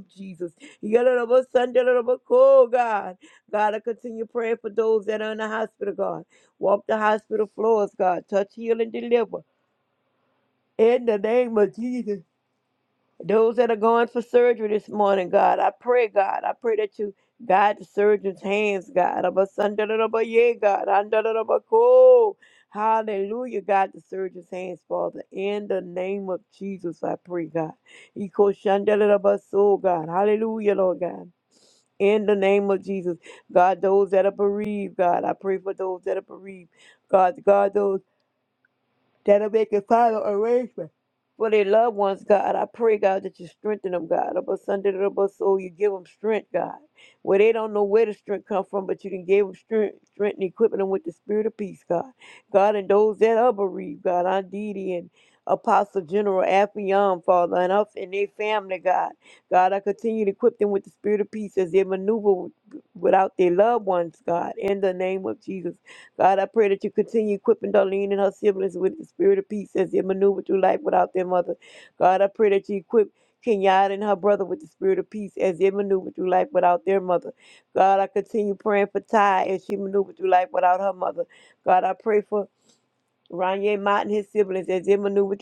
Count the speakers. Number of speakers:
1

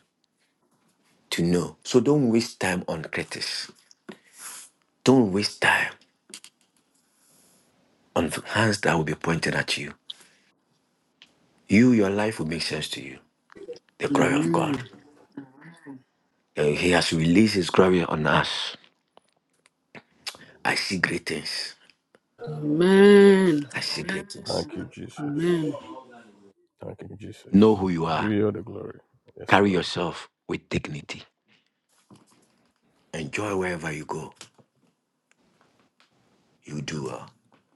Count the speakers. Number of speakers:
3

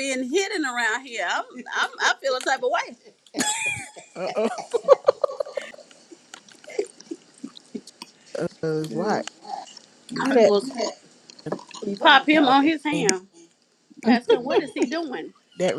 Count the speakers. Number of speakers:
2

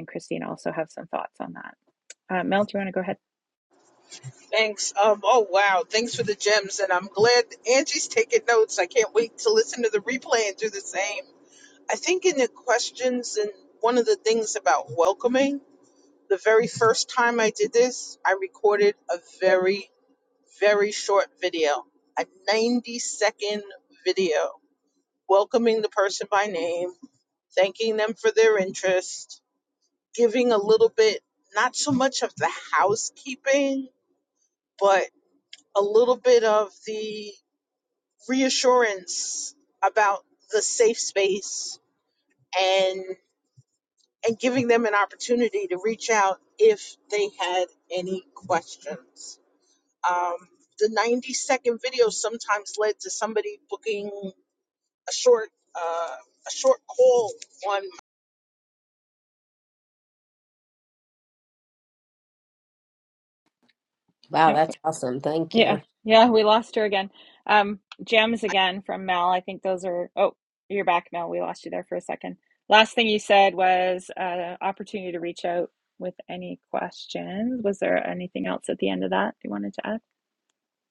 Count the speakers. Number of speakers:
3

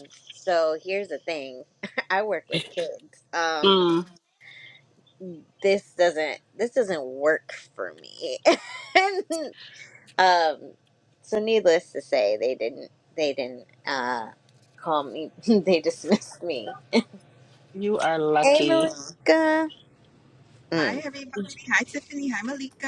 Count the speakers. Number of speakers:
3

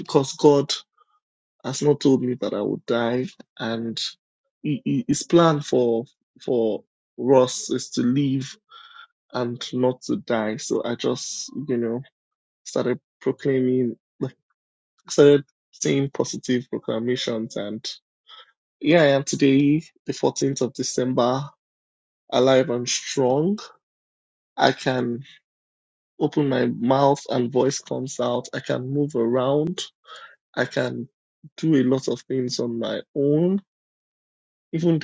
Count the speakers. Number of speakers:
1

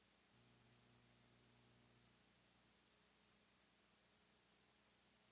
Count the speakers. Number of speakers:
0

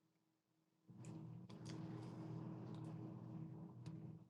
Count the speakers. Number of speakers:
0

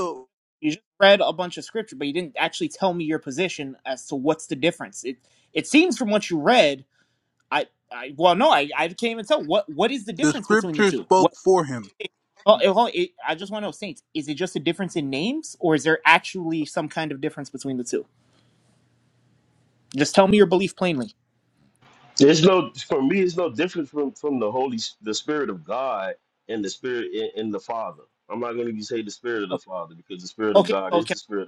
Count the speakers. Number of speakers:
3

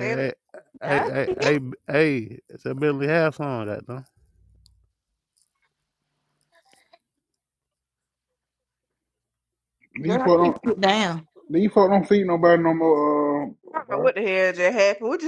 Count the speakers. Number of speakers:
4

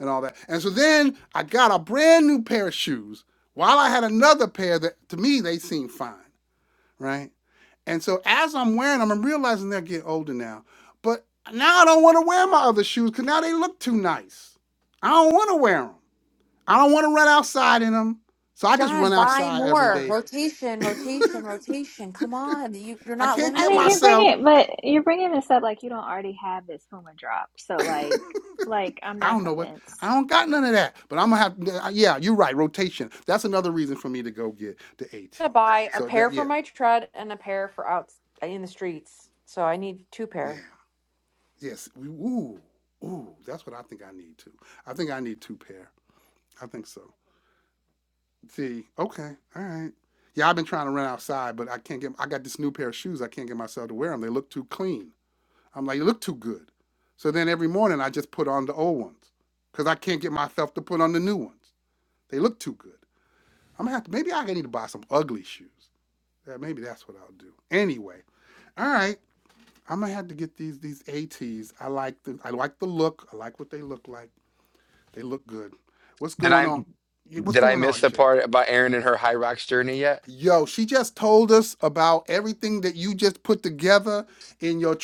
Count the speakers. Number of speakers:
4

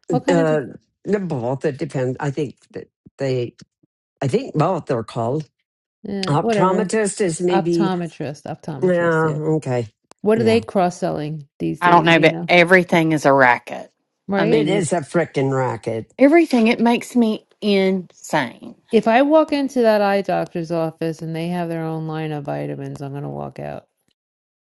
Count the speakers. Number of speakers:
3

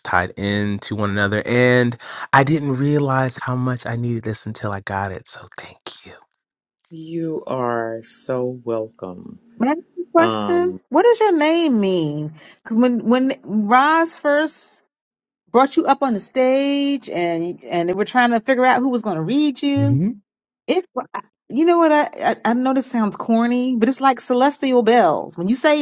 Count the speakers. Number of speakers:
3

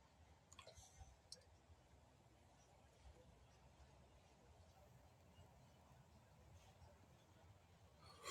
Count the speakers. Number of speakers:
0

